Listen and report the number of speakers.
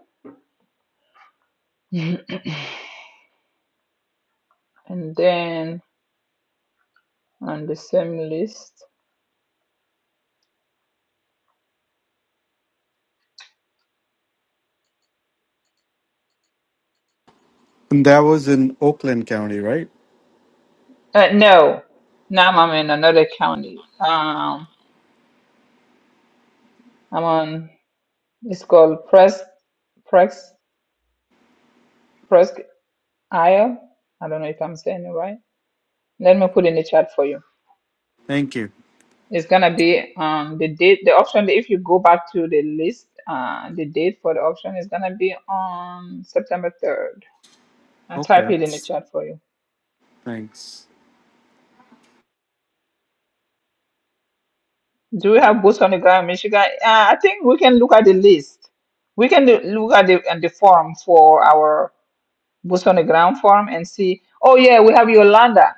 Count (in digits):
2